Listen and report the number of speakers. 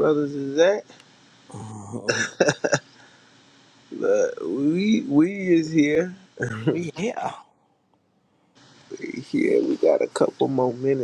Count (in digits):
2